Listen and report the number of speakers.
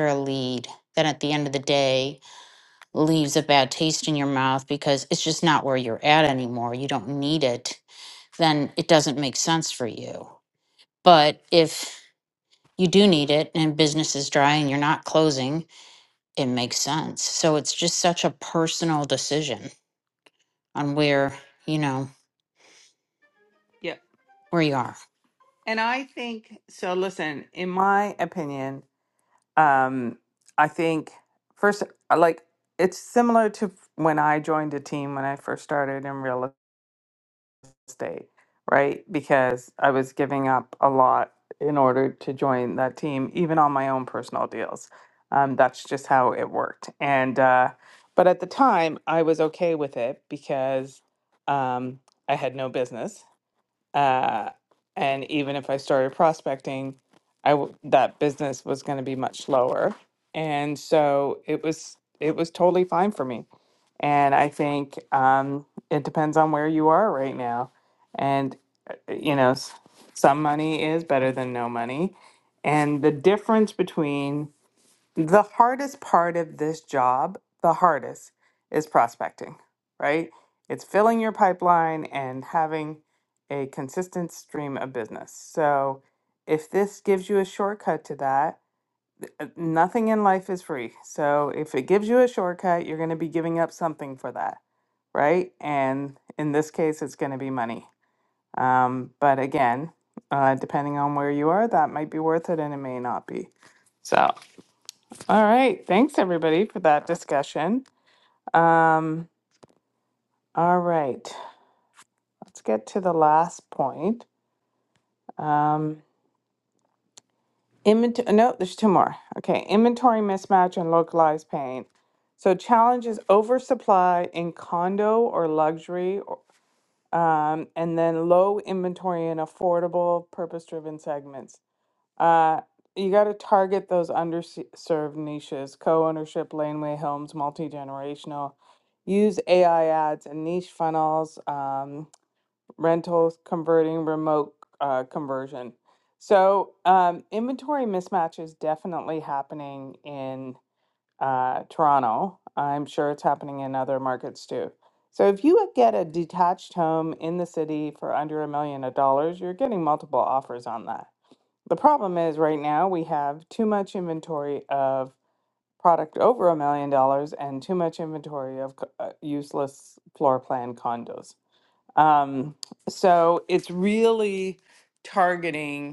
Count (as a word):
two